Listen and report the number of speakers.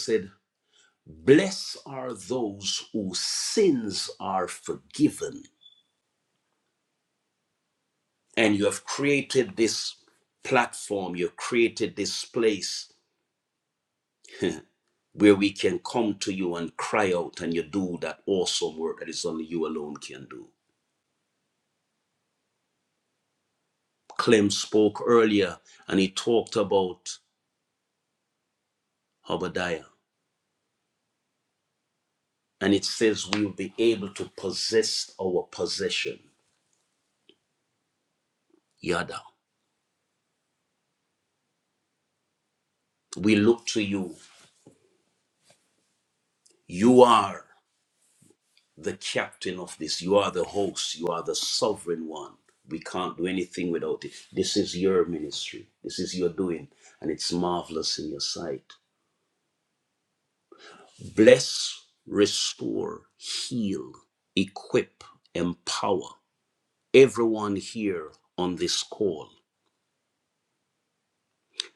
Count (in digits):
1